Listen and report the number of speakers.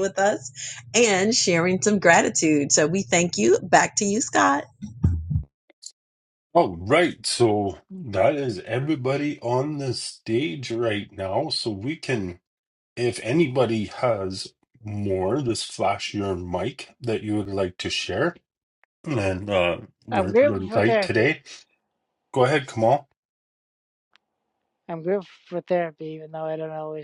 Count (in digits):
3